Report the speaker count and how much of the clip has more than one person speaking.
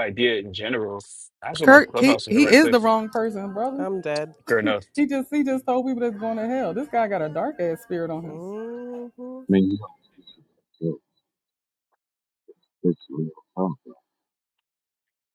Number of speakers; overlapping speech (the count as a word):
four, about 9%